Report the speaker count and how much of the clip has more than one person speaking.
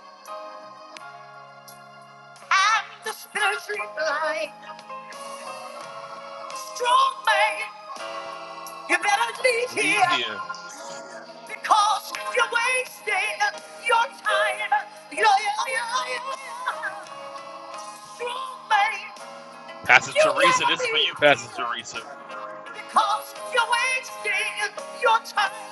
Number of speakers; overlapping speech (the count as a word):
two, about 6%